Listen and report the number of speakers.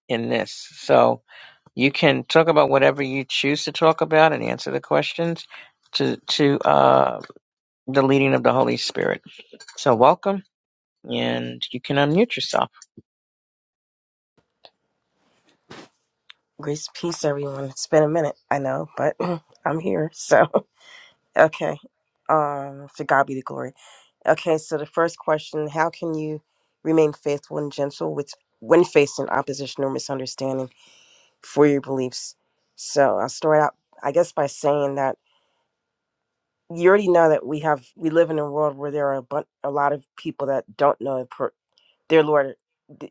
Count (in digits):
2